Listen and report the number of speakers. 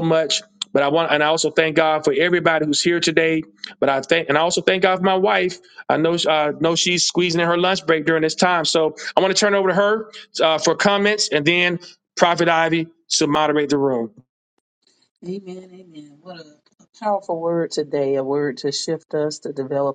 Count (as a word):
two